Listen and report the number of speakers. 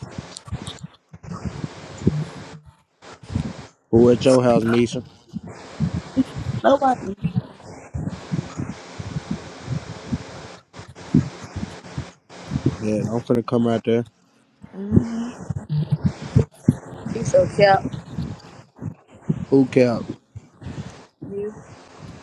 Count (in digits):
3